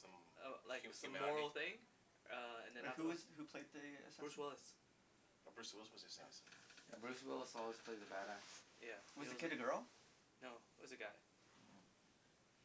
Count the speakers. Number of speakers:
four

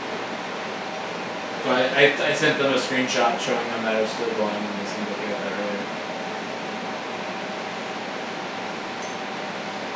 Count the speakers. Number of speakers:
one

